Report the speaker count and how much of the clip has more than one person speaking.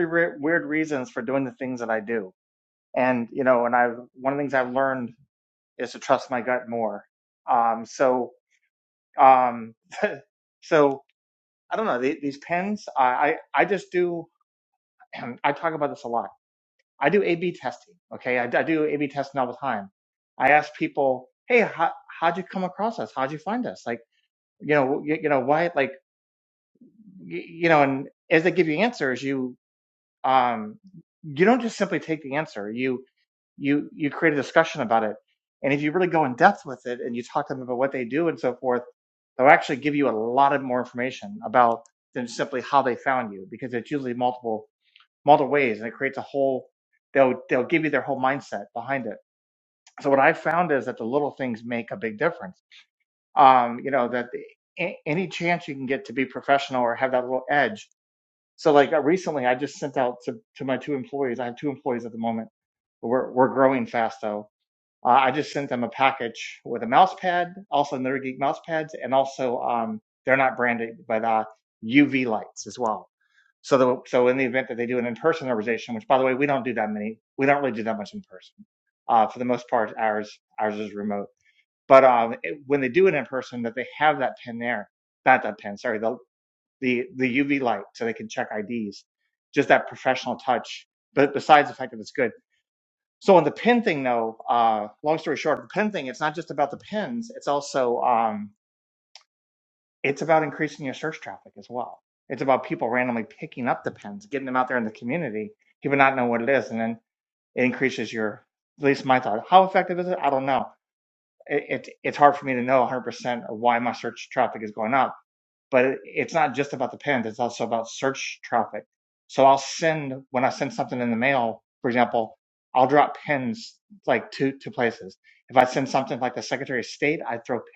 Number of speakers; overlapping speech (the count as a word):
one, no overlap